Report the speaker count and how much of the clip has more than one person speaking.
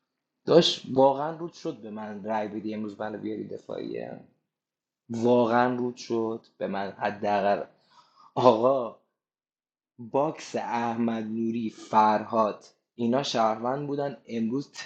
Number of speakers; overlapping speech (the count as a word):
one, no overlap